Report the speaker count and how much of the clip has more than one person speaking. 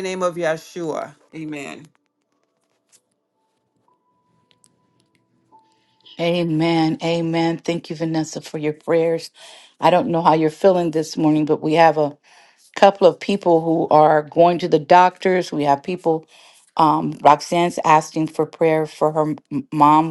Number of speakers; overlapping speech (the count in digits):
2, no overlap